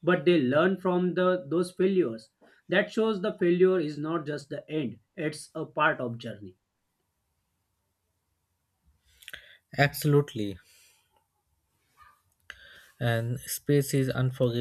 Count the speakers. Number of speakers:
2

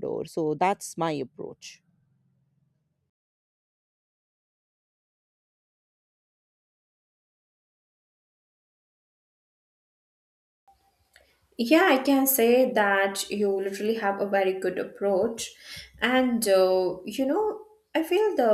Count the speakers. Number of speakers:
2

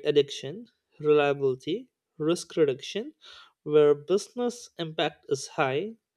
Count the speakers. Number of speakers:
1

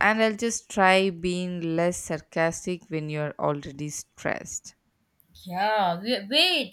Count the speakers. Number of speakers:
2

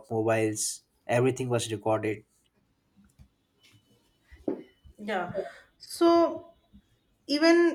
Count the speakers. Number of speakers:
2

